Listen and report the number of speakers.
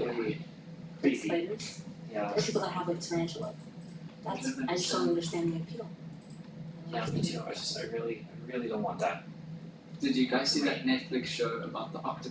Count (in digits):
3